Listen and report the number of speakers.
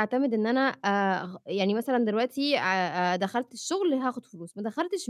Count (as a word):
one